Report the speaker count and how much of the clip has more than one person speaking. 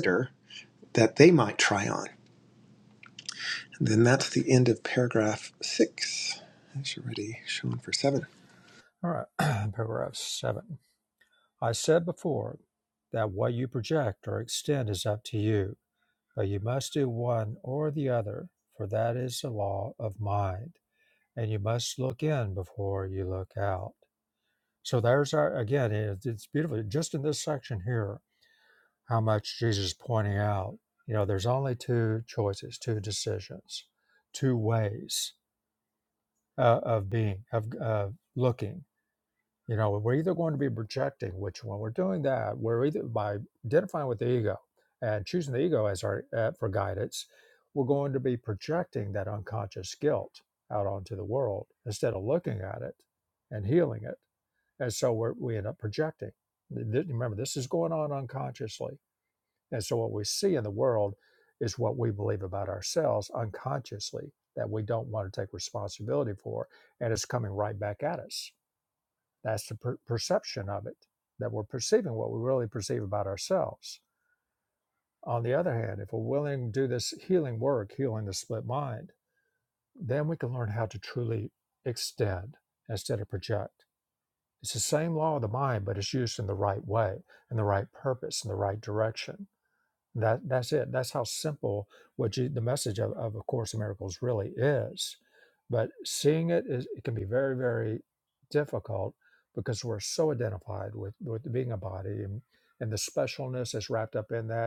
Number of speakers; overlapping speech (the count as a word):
two, no overlap